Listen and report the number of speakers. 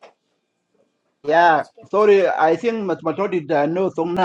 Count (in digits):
1